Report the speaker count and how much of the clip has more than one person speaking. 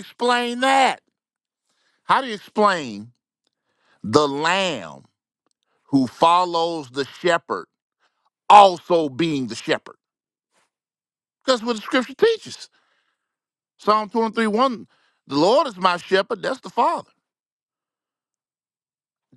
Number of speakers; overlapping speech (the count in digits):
1, no overlap